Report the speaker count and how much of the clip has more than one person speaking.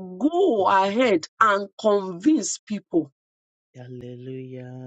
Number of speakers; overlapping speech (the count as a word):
two, about 2%